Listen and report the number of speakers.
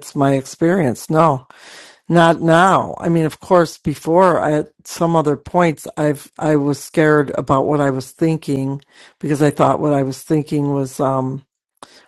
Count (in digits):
1